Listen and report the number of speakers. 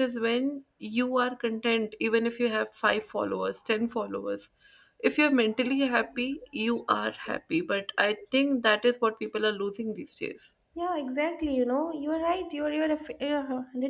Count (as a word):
two